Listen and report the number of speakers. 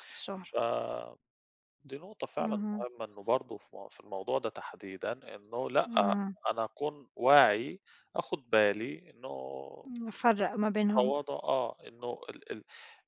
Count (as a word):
two